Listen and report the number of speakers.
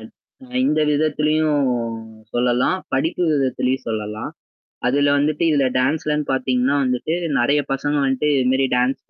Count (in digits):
1